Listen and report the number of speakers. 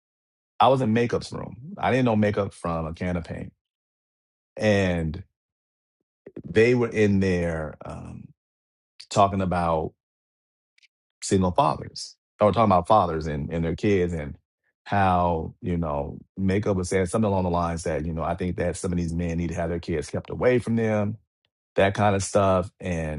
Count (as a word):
one